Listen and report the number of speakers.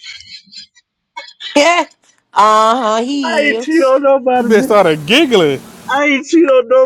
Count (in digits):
3